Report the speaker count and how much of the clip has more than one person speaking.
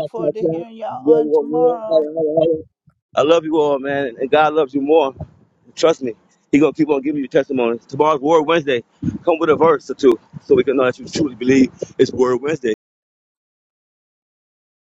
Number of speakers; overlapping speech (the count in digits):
2, about 11%